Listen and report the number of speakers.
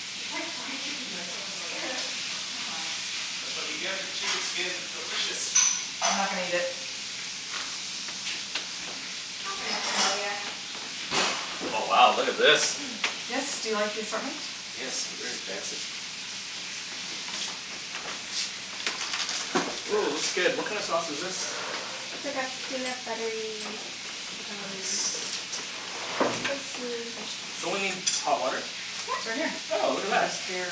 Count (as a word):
four